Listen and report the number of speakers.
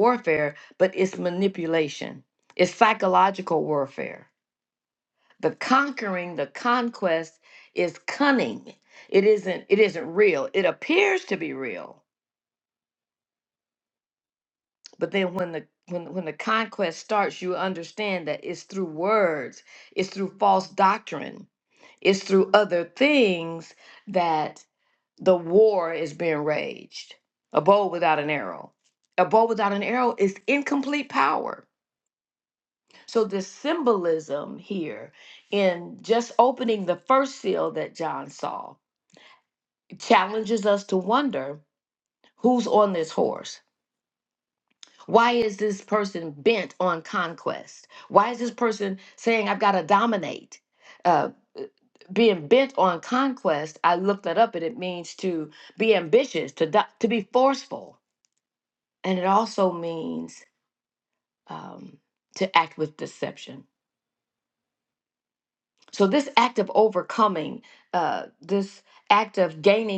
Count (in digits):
1